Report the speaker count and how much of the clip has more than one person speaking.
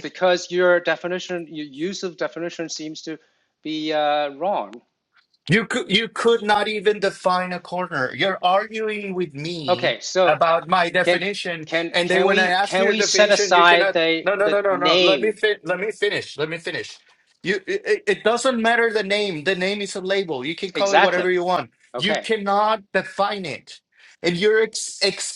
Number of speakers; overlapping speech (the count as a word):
two, about 20%